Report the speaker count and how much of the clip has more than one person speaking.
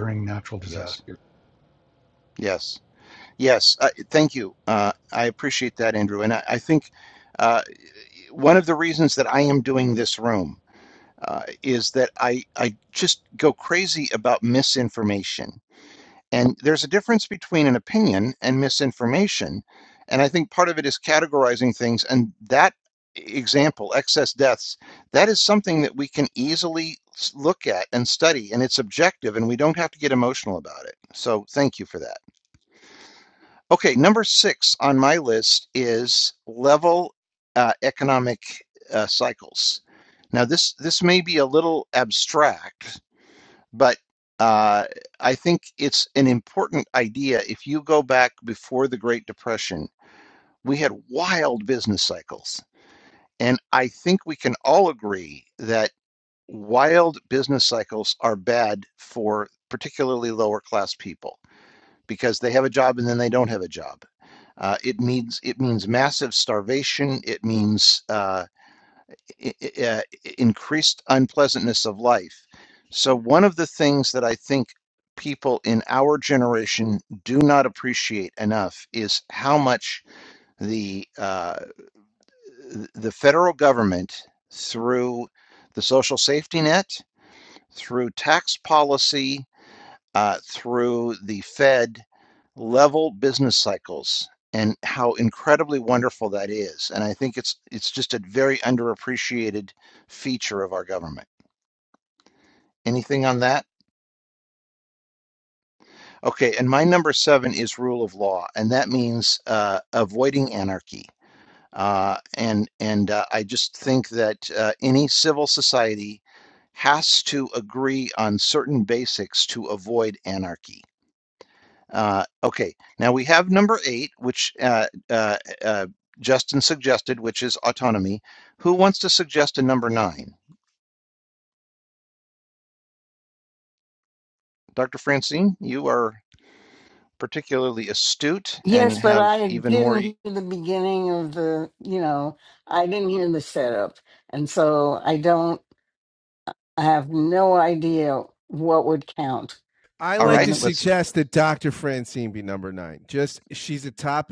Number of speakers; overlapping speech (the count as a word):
four, about 1%